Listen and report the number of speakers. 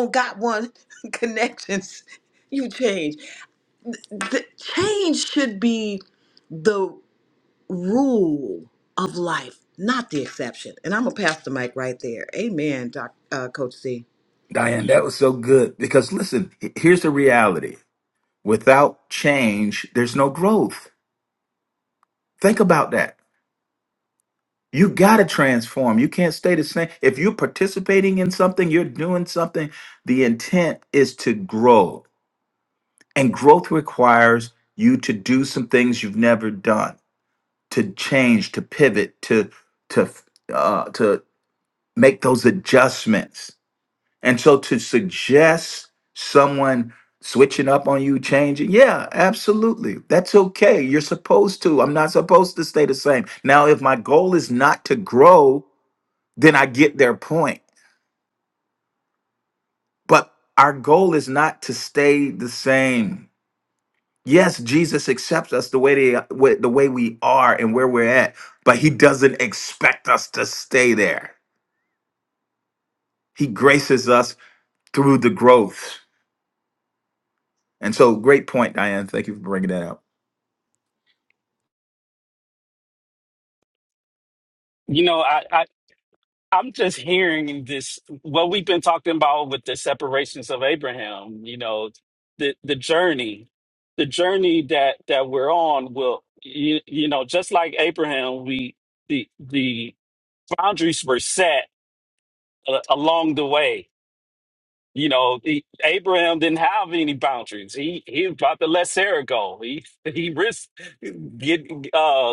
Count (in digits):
3